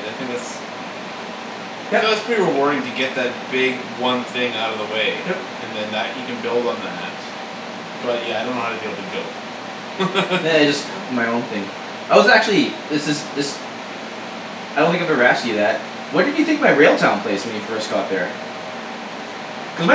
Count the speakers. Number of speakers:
2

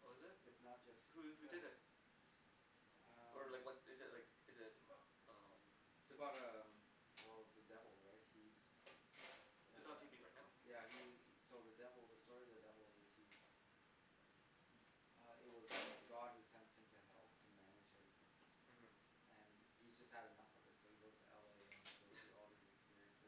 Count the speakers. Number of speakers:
2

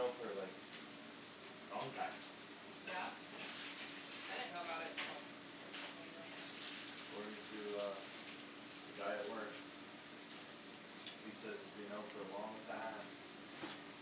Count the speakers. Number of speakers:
2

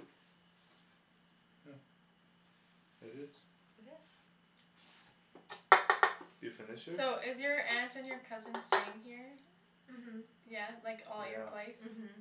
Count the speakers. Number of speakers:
3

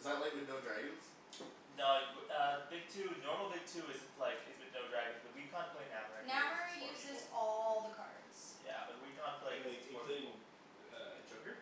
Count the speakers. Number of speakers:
4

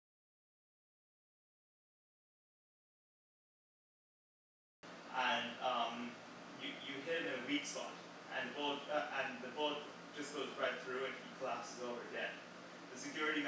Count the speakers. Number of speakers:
1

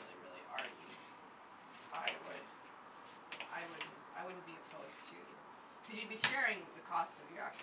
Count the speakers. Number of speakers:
1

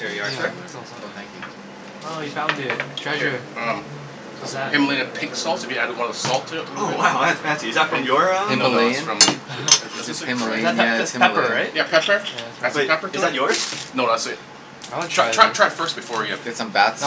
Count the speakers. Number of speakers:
4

